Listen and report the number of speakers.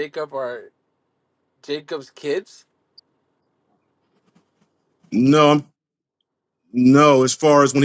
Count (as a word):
two